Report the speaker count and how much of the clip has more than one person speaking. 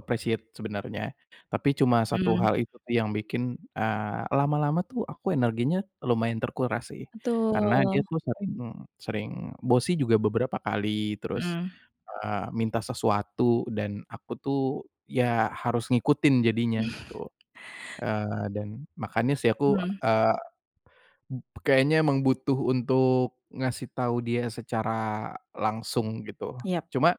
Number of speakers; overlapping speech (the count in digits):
2, about 5%